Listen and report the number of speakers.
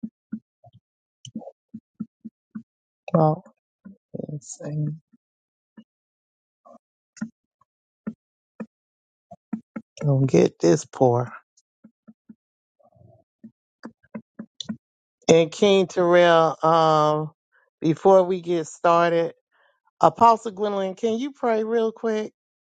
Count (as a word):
one